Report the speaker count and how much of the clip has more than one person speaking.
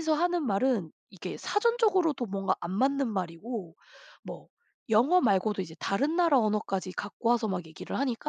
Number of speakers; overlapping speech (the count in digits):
1, no overlap